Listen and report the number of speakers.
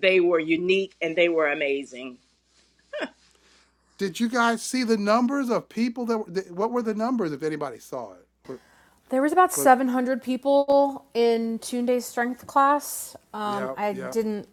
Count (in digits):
3